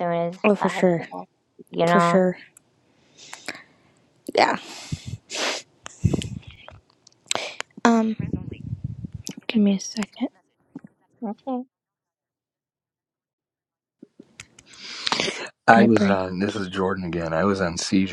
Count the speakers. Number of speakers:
three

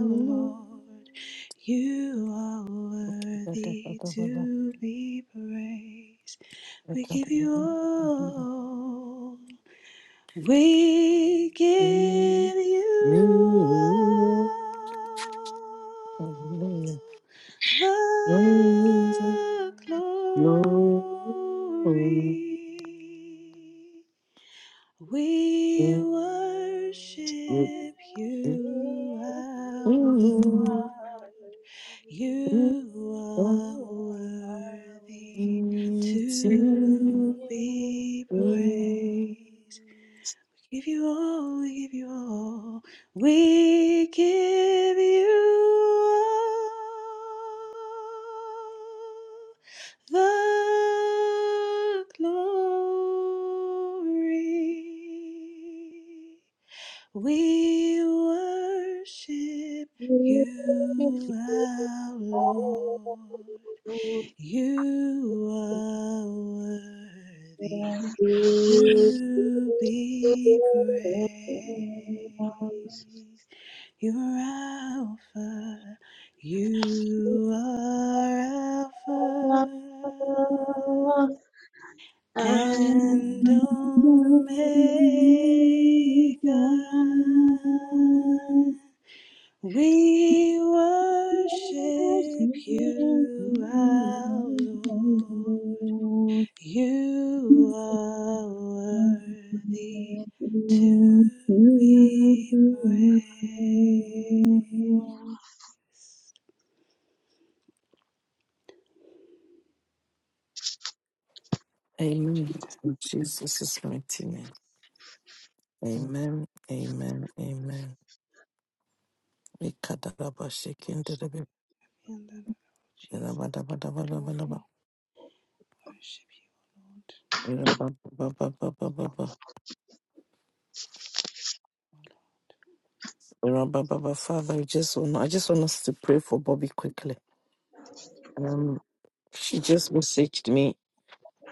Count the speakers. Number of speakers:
three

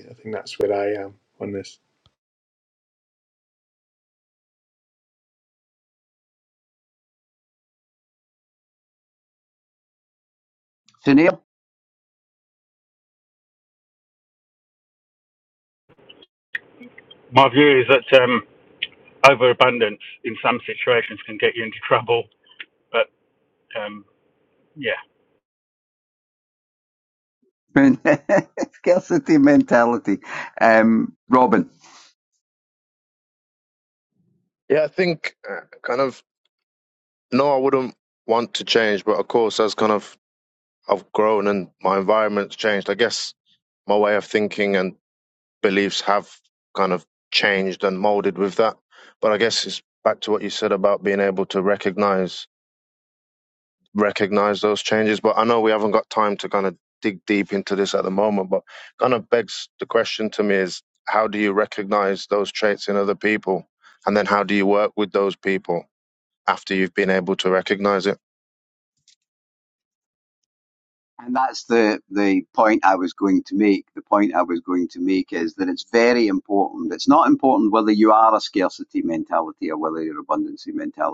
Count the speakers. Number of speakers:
four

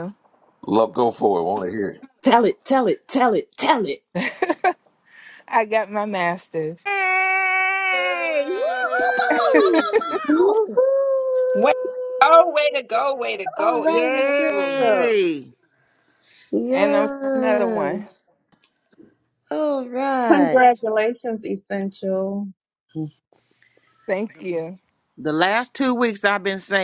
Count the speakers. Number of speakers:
seven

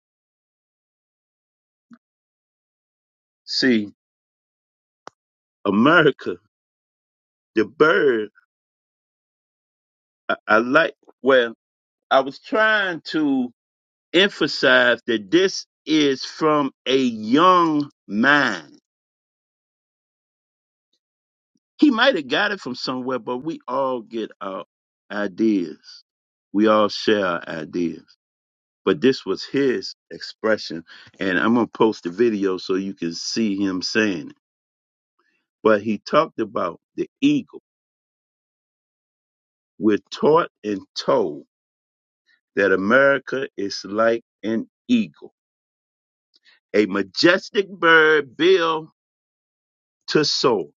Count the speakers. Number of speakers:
one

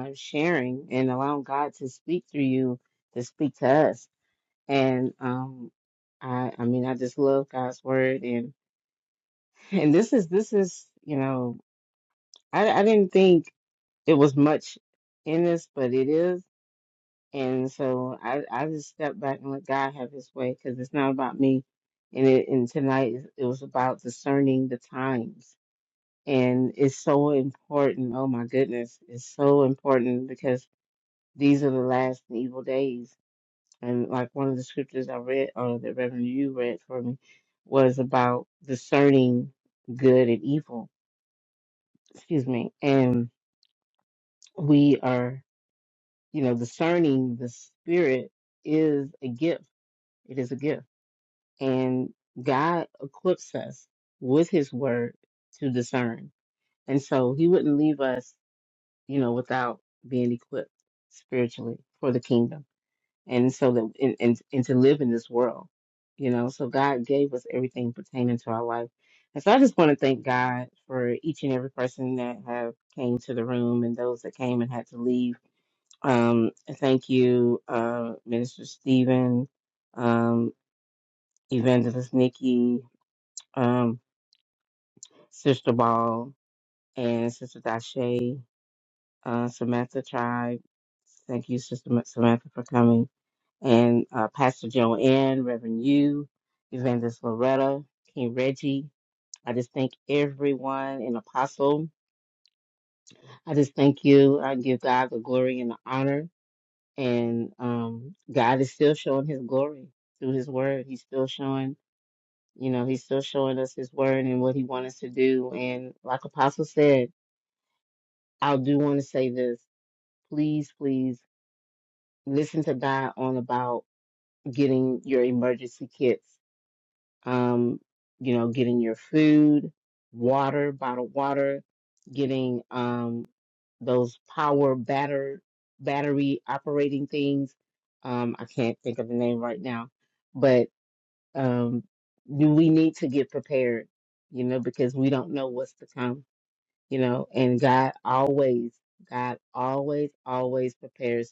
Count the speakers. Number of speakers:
one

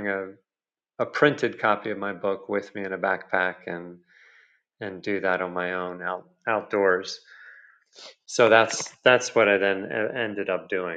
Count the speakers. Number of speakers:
one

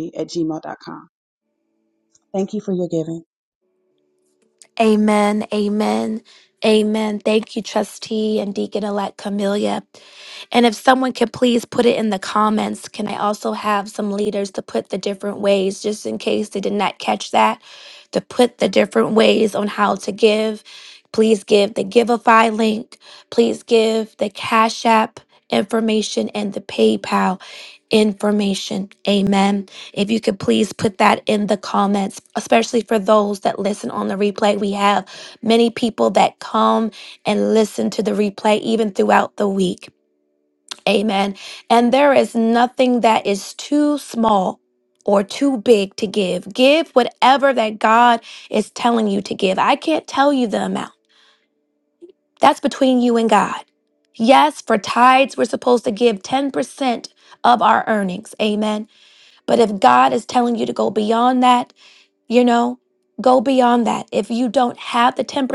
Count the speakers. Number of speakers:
two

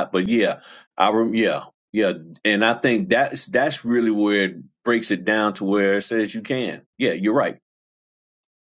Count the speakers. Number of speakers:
one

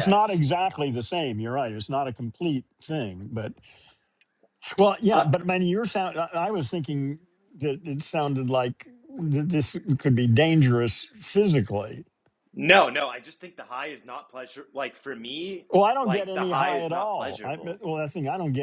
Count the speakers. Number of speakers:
two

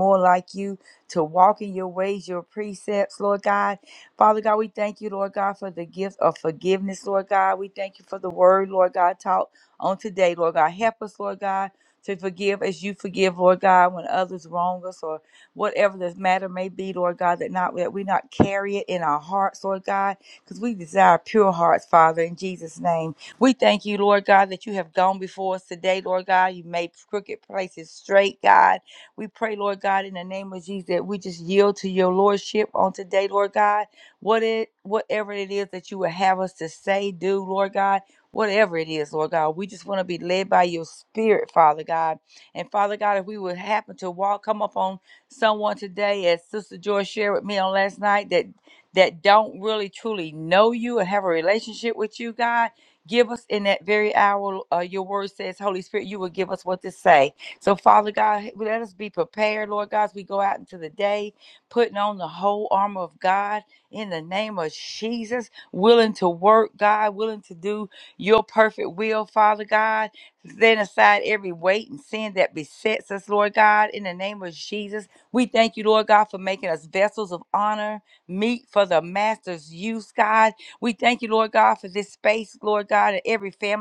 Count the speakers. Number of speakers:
one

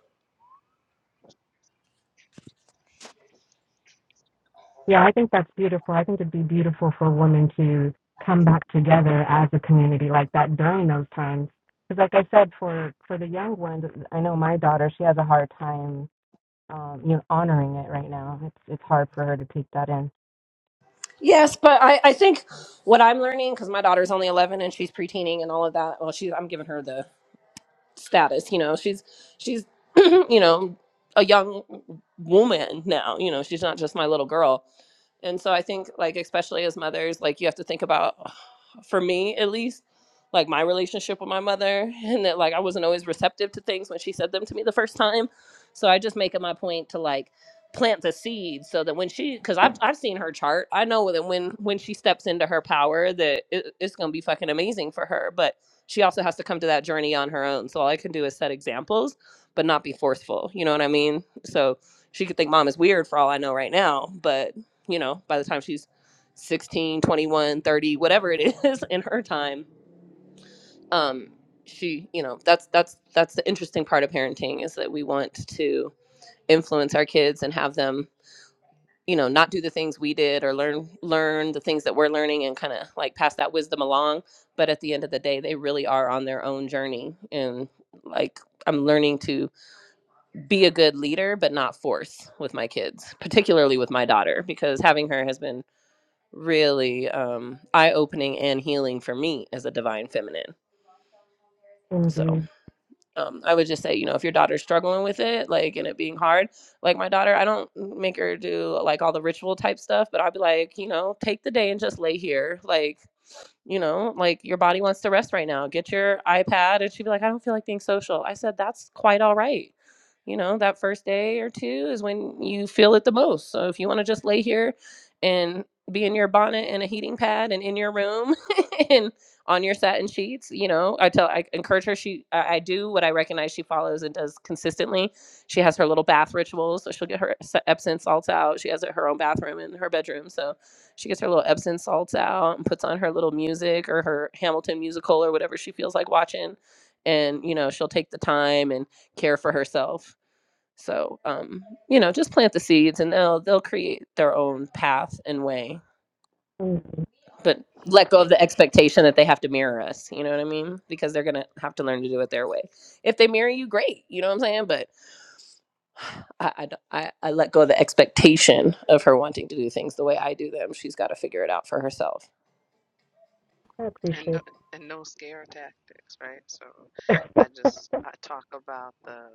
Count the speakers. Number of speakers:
three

